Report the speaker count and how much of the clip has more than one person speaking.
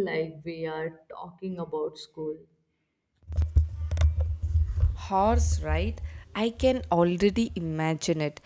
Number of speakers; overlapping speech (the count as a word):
two, no overlap